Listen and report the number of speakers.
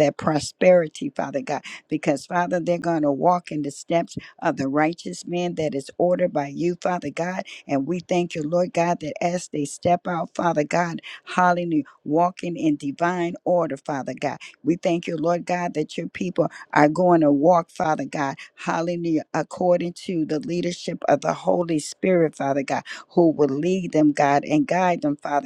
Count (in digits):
1